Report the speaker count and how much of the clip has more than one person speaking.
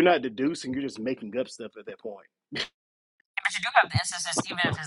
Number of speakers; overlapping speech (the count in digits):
2, no overlap